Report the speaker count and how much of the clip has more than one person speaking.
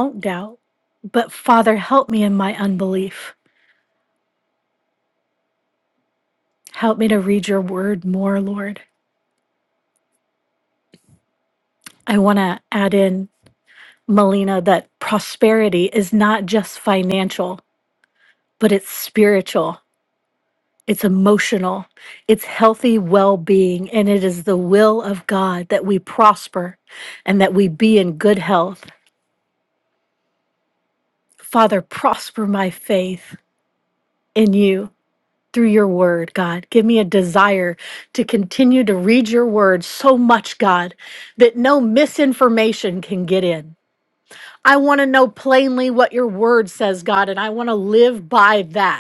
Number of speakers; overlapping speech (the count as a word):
one, no overlap